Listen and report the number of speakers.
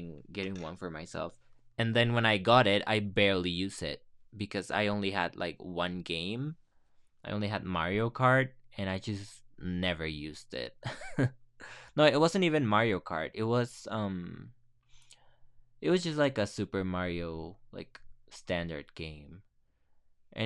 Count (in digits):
1